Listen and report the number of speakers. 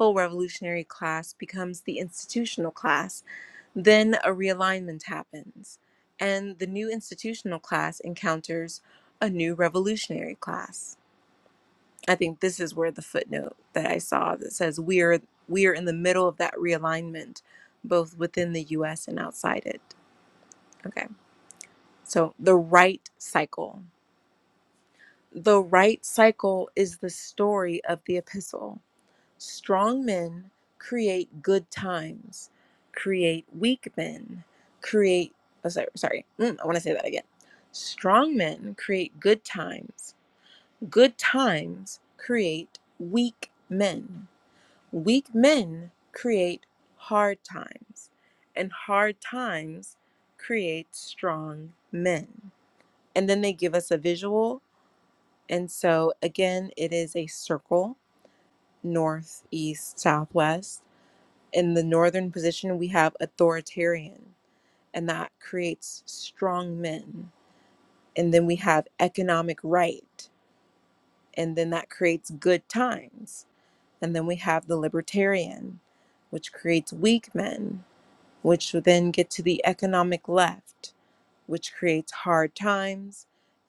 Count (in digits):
1